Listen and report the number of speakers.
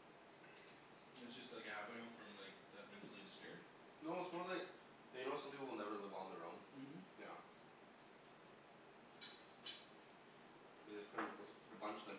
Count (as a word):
two